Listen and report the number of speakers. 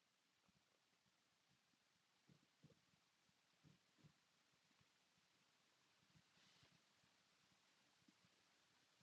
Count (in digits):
0